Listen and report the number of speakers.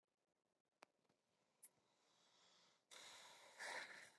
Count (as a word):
zero